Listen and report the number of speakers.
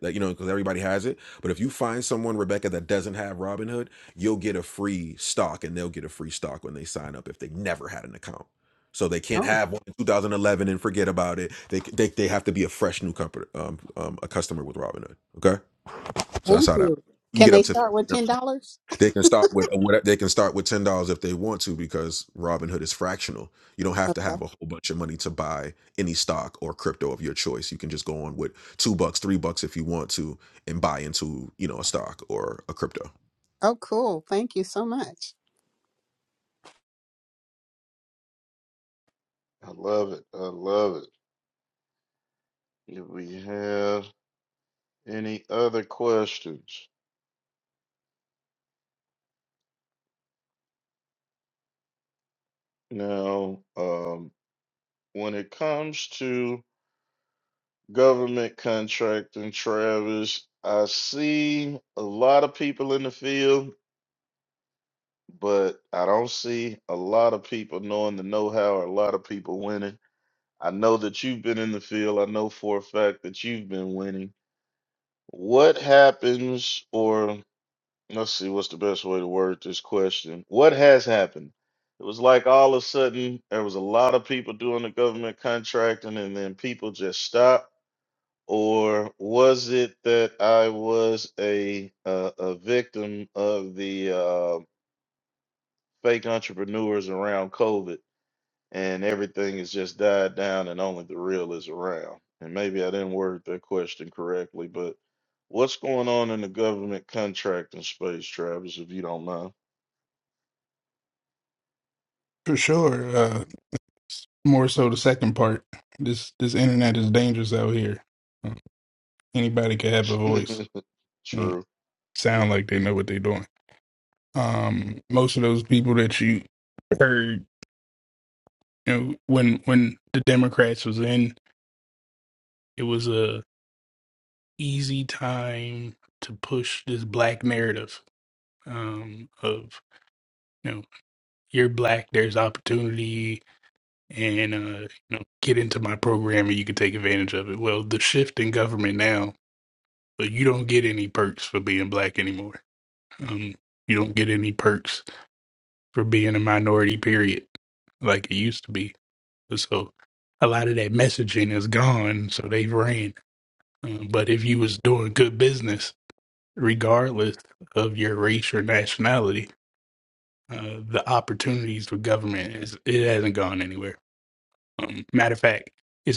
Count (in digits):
4